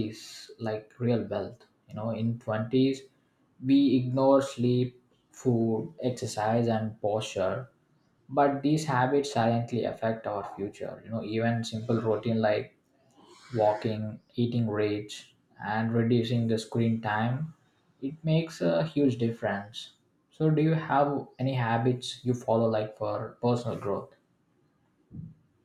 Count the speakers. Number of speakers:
1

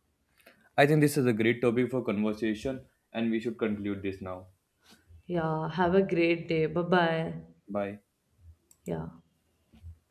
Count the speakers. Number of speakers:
2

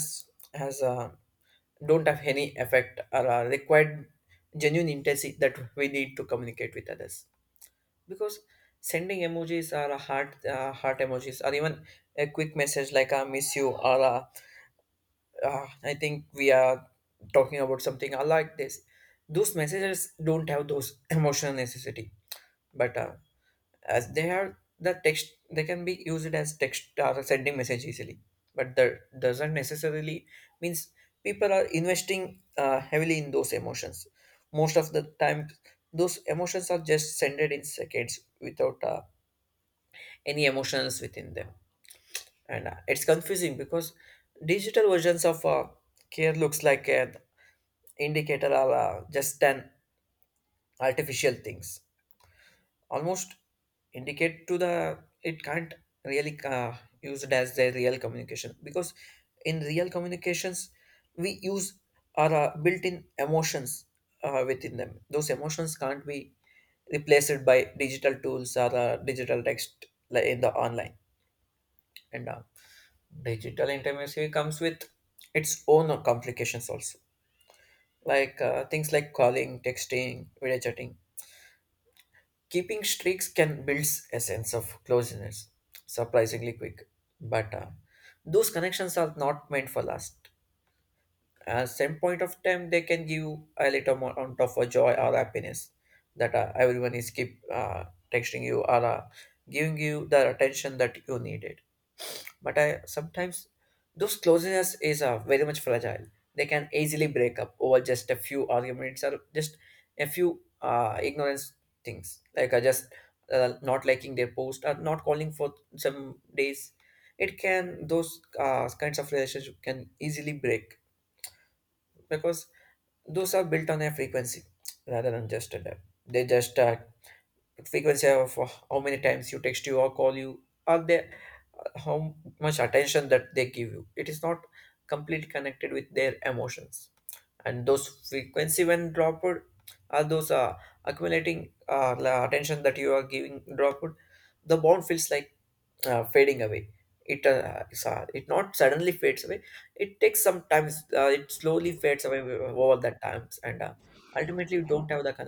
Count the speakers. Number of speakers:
1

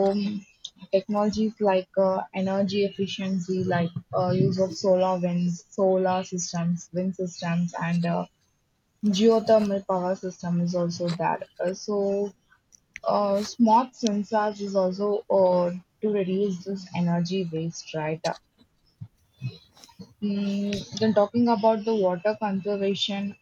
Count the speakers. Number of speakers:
1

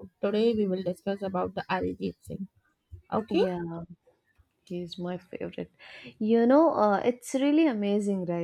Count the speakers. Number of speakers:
2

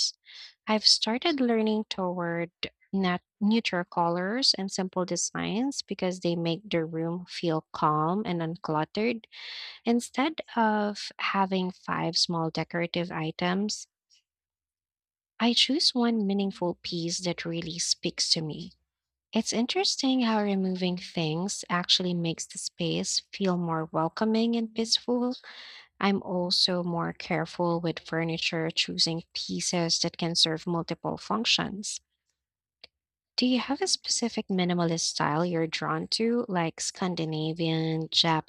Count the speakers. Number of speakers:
1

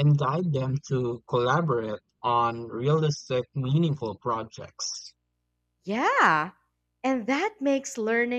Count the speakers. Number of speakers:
2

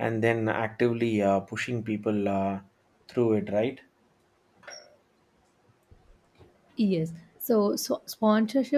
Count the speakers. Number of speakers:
2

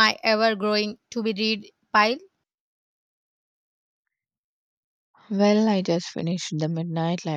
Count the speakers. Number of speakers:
2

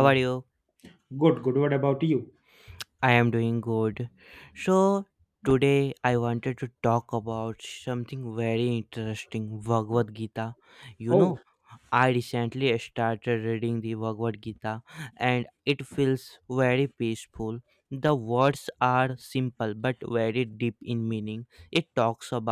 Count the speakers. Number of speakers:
2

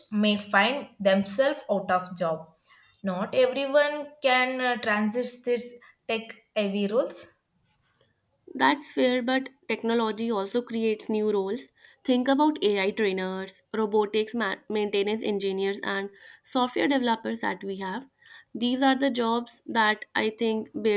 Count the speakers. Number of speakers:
2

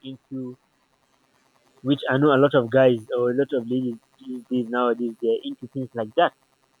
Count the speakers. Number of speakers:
1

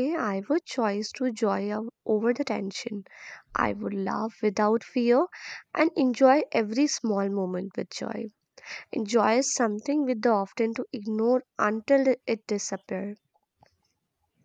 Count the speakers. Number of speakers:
1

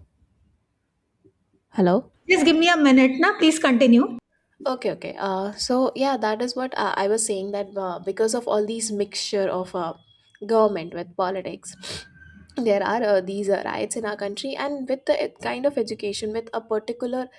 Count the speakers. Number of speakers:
2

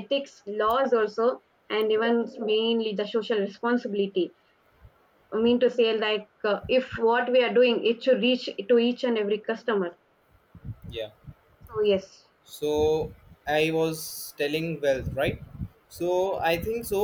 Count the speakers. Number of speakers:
2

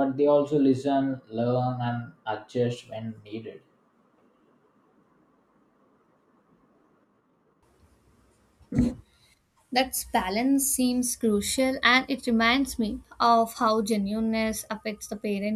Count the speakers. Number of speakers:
2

